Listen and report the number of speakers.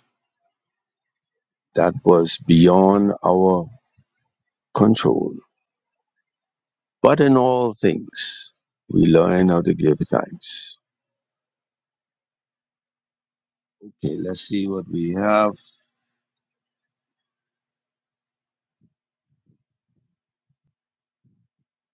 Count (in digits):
1